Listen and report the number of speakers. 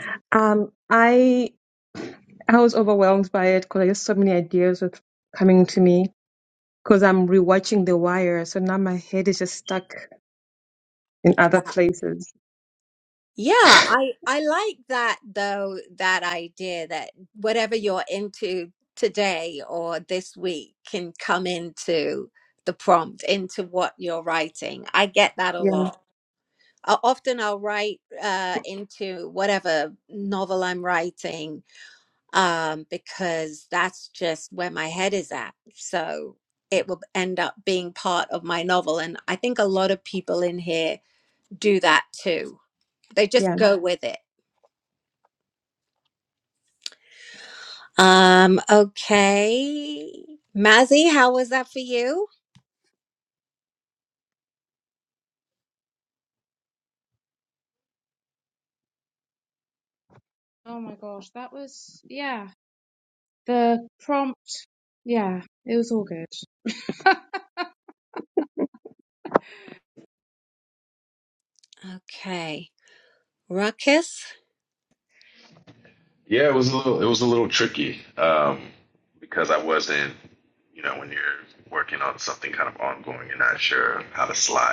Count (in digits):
4